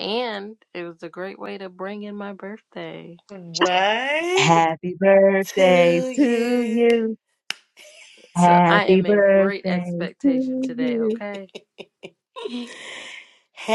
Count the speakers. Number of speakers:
three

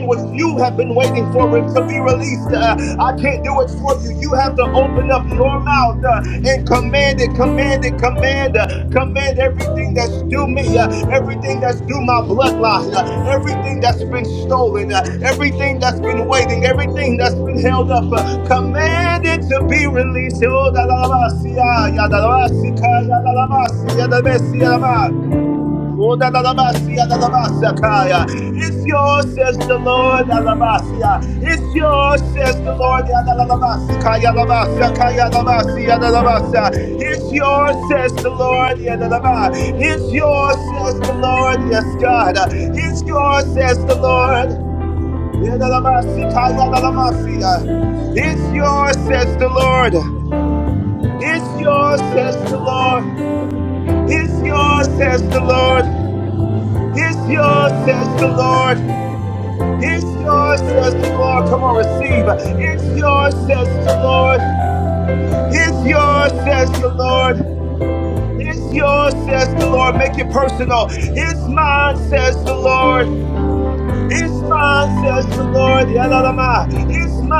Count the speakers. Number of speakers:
one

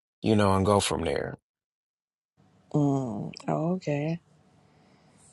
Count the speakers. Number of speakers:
two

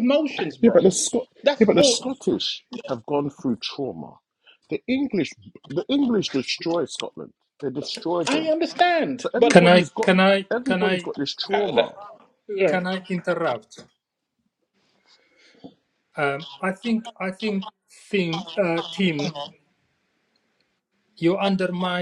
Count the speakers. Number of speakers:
three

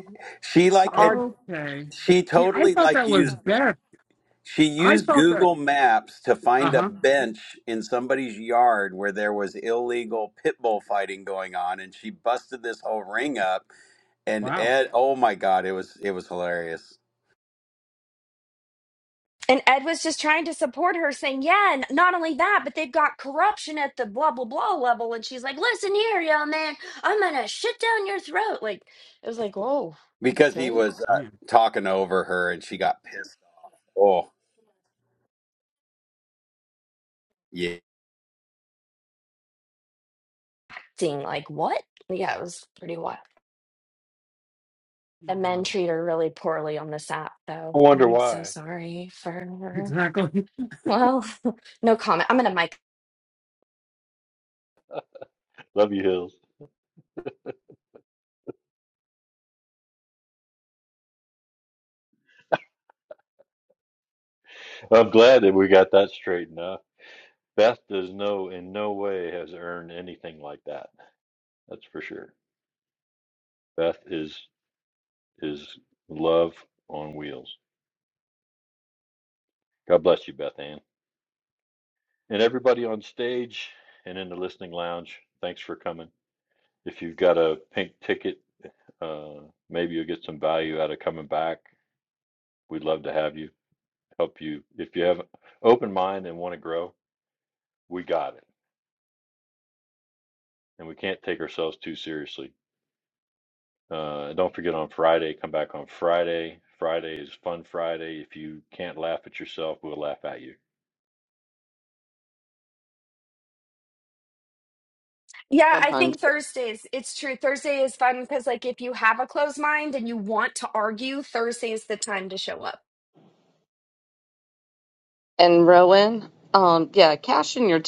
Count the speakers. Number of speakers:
five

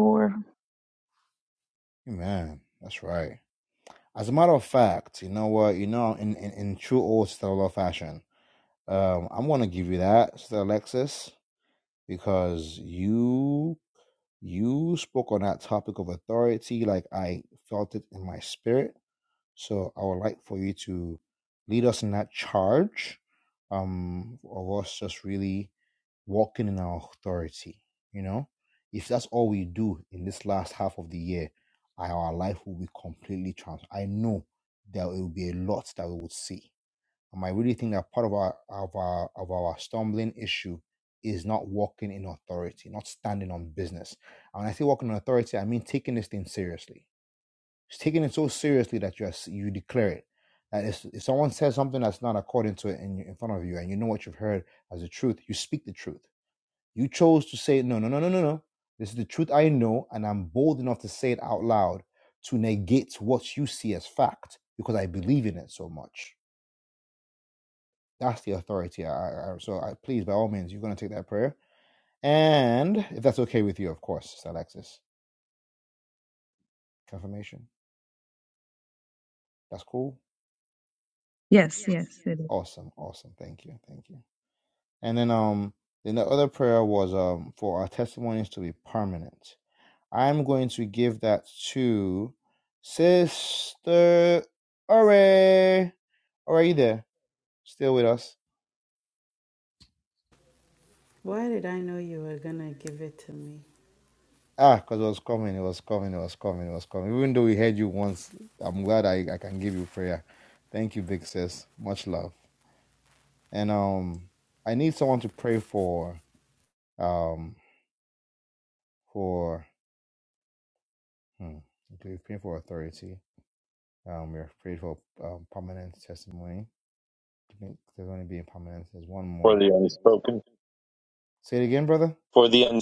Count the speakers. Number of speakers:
four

